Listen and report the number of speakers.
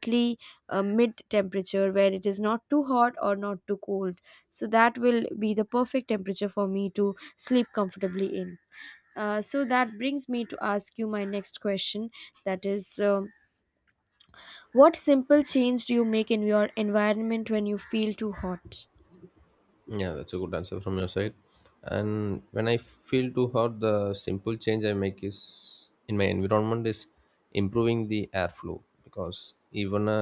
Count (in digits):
2